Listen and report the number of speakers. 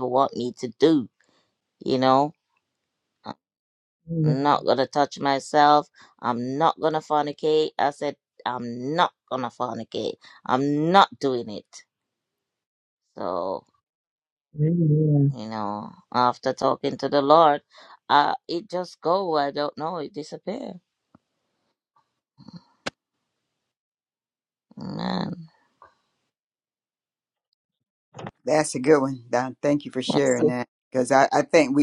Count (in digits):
3